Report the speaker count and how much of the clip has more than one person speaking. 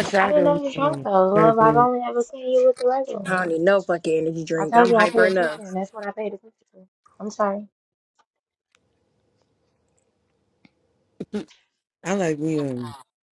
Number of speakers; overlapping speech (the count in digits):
3, about 20%